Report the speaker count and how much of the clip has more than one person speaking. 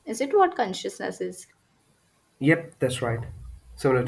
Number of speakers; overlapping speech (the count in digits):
2, about 1%